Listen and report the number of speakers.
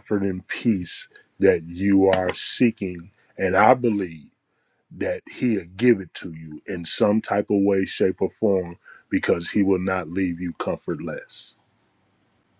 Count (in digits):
1